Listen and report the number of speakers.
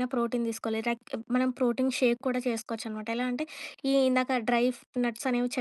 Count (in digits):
1